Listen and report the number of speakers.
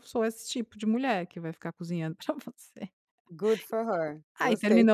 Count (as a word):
two